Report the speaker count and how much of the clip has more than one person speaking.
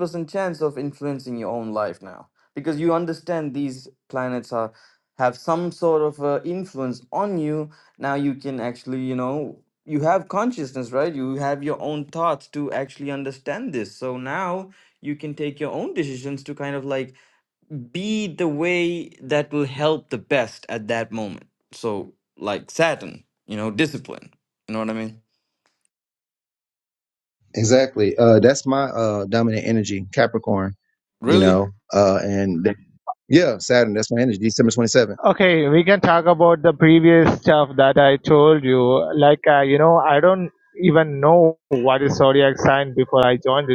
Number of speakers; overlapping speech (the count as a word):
three, about 1%